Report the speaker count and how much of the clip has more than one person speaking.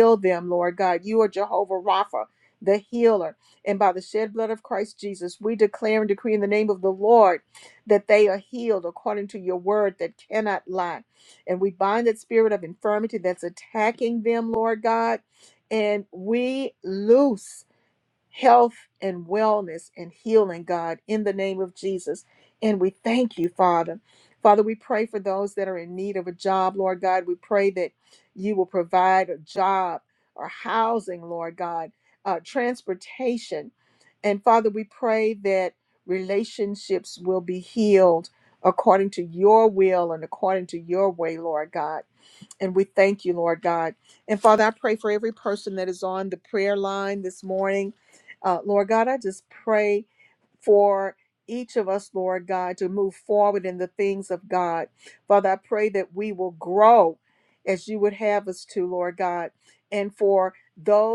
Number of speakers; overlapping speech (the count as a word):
one, no overlap